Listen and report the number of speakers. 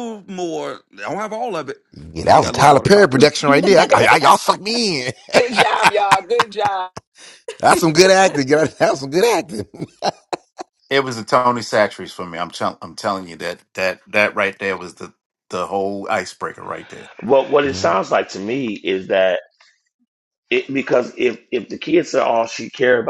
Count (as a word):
five